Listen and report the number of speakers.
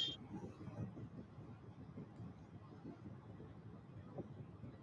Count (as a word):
zero